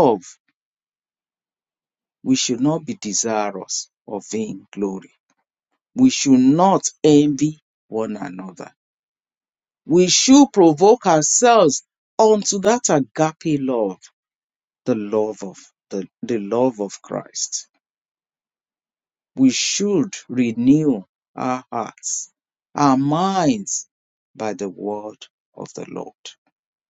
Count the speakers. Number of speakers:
1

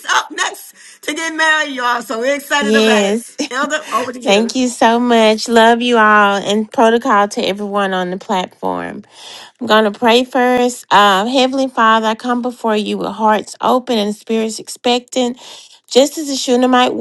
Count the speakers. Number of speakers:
2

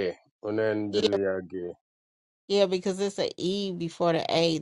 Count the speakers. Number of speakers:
2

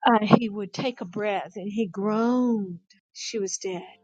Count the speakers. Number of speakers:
1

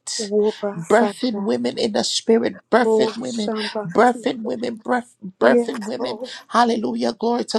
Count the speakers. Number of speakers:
2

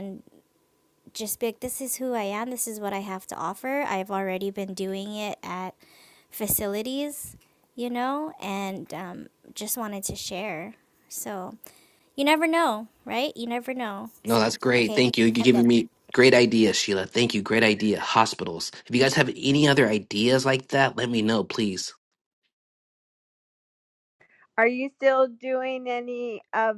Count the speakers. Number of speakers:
3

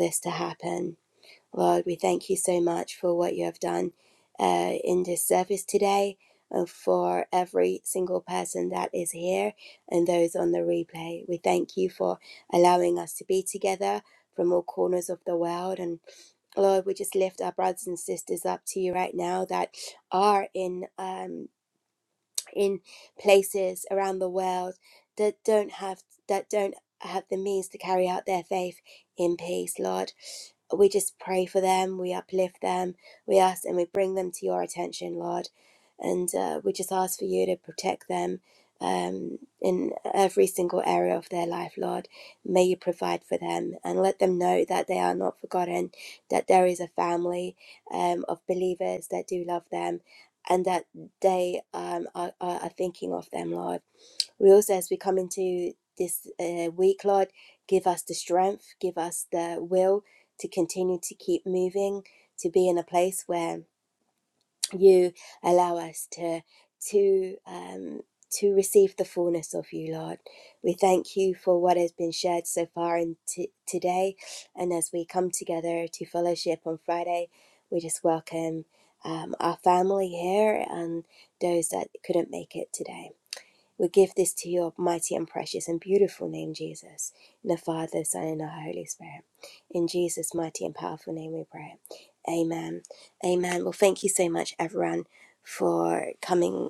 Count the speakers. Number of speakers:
1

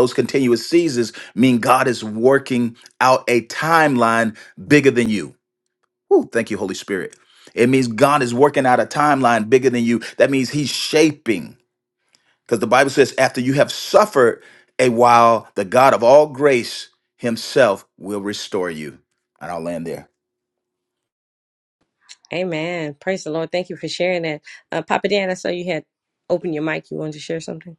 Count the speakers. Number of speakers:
2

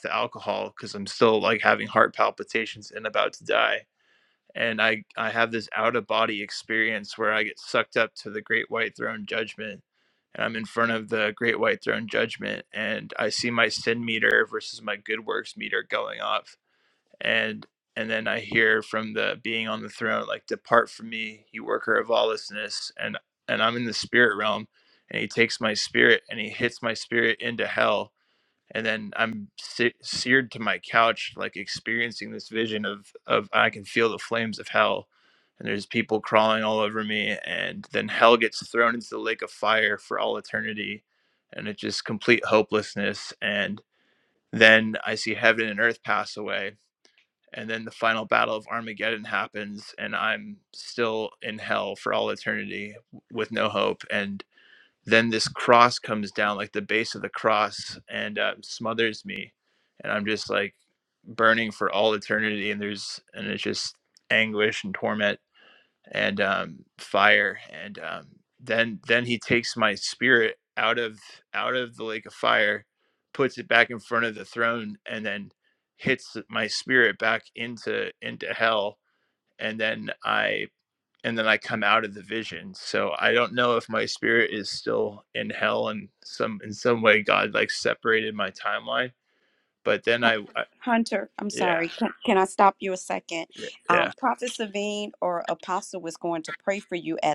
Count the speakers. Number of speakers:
2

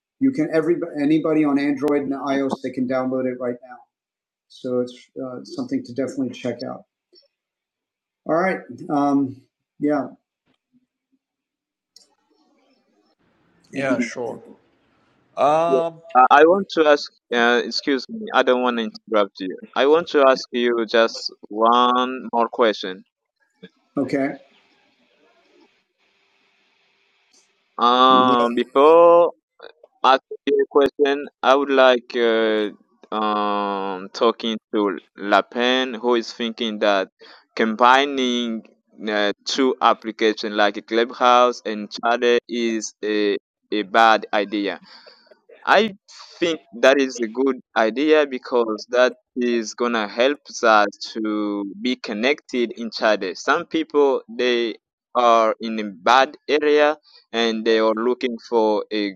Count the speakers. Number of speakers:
3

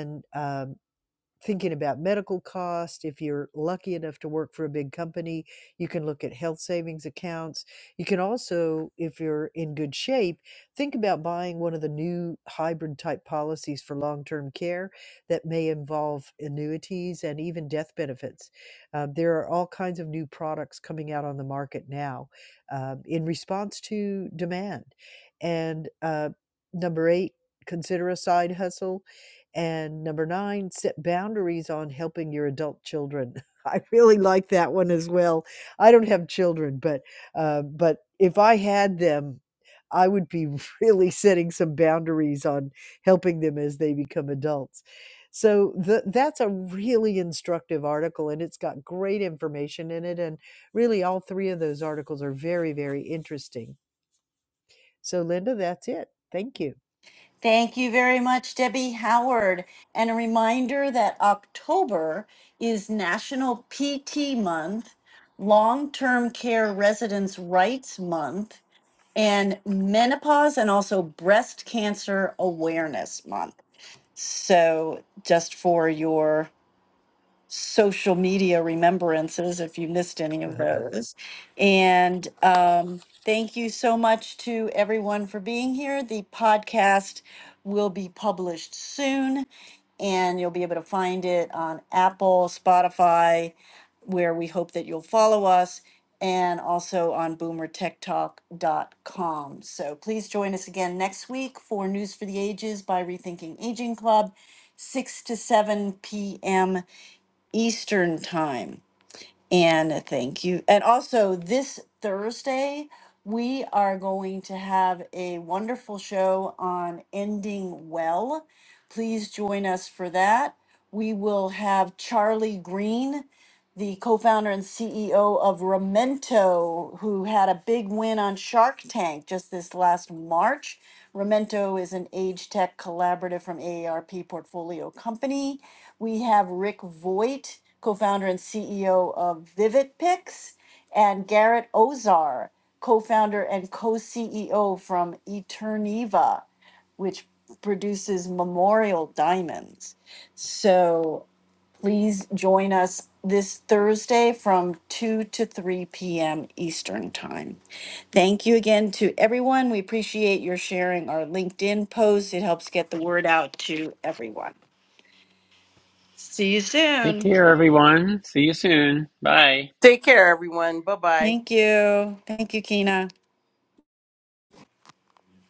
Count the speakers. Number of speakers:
4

